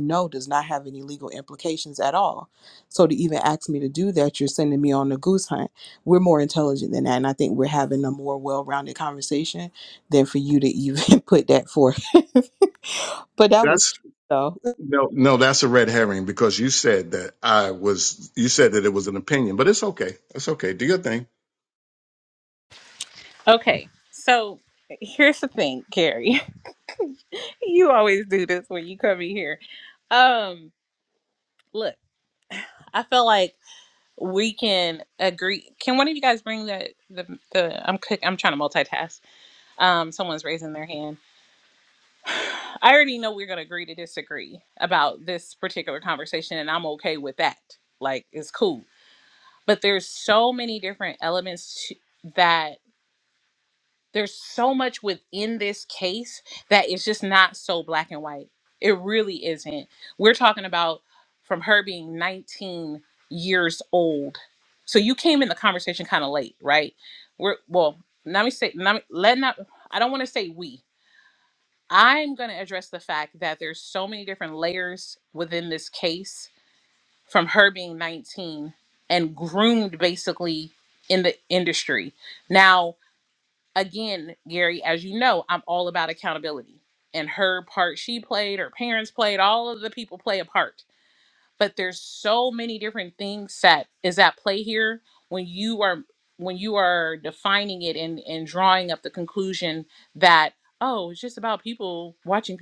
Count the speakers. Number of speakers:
3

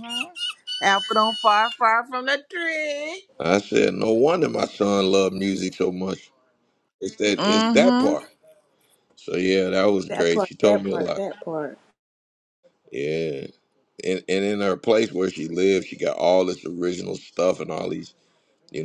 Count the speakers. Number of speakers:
3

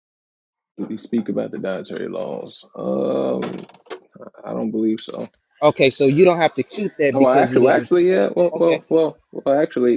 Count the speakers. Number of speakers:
2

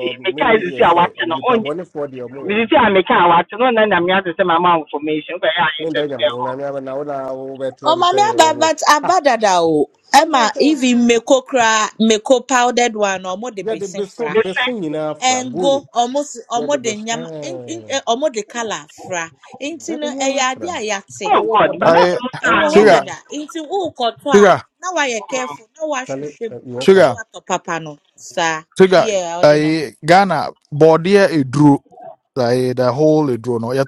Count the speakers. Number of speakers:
4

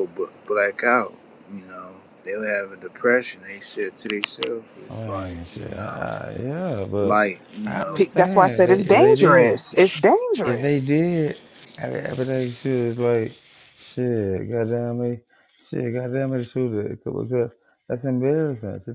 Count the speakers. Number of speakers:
3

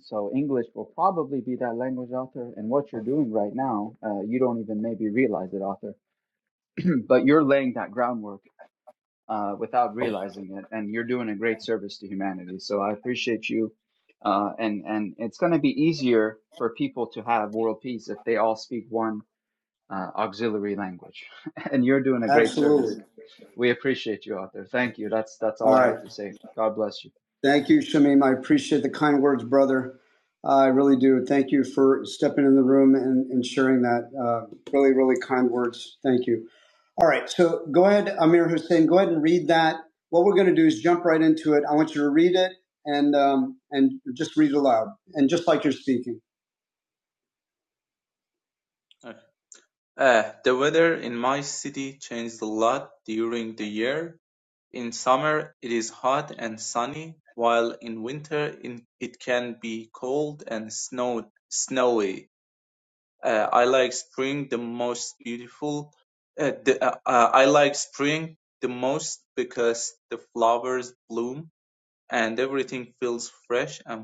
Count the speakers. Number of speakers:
3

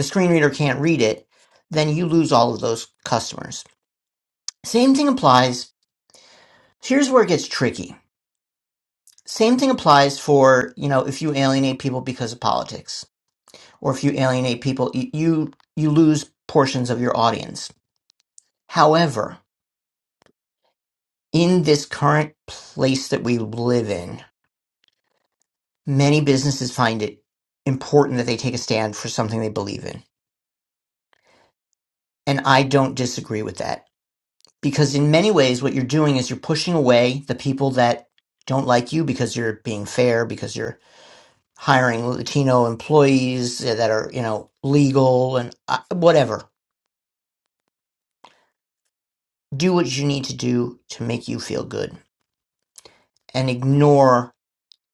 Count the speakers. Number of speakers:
1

